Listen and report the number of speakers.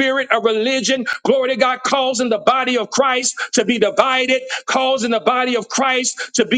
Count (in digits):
1